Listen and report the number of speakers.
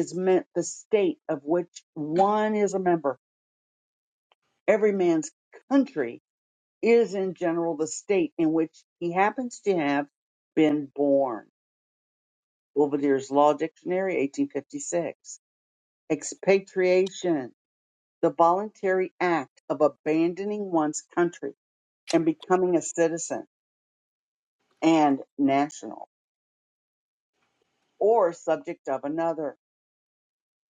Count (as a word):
one